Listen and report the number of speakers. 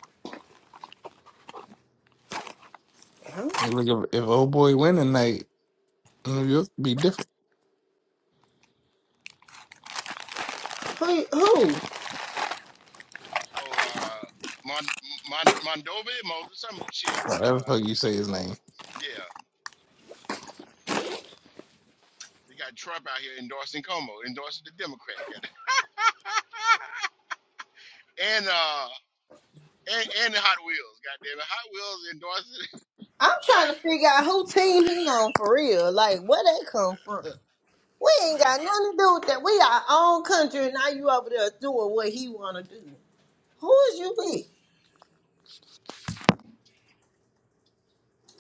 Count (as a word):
three